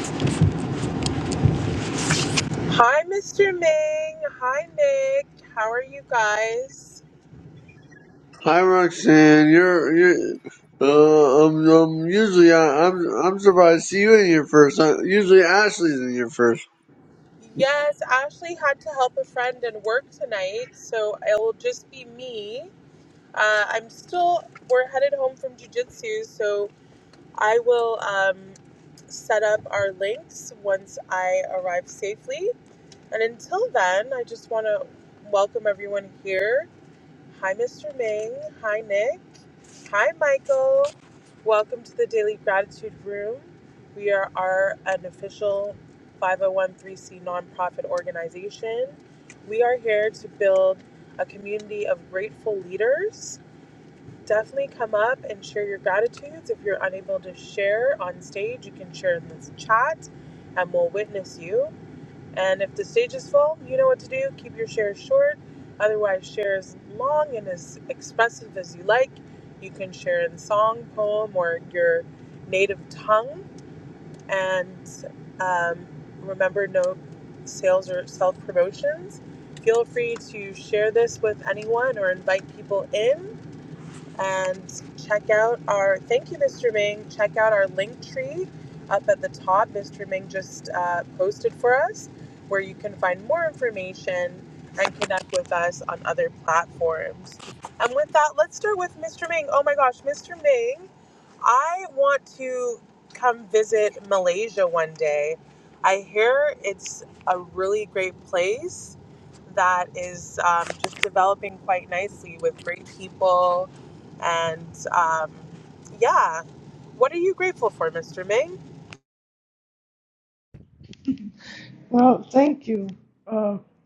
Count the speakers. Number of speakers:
3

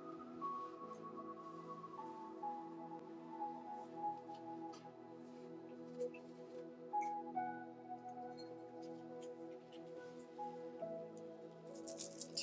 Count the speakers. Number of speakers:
0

